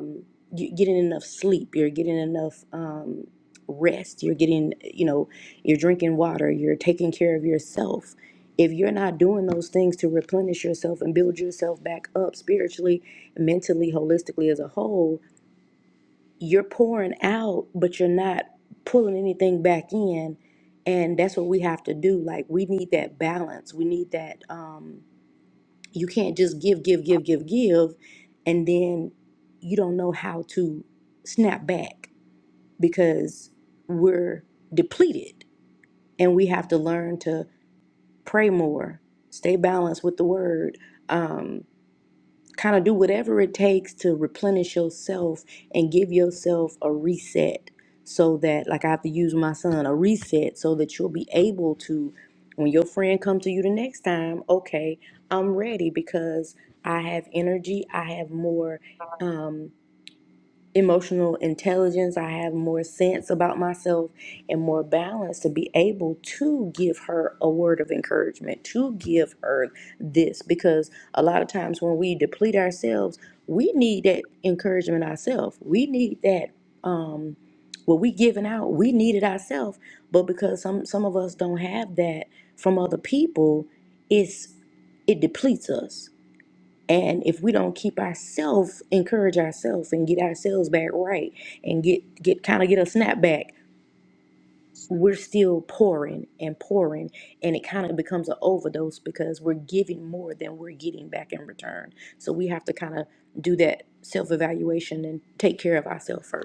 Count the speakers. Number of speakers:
1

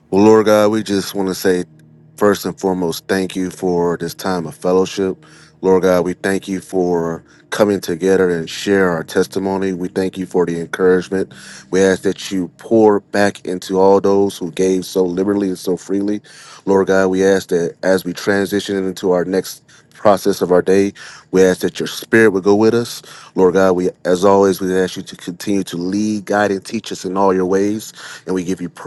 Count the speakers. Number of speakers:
1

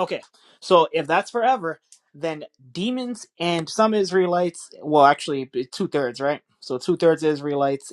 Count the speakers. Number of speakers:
1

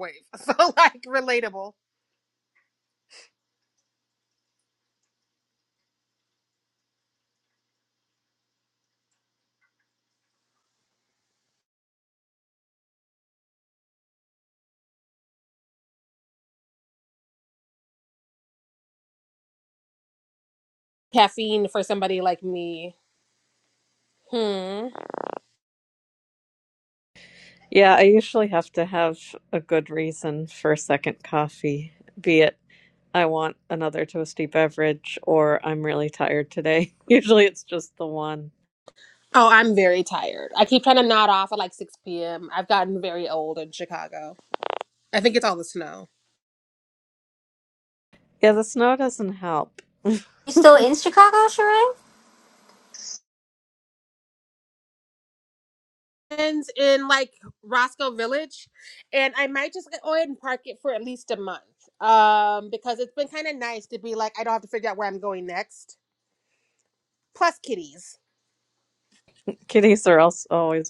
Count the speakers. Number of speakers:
3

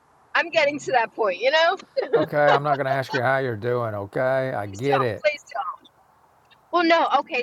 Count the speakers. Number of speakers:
2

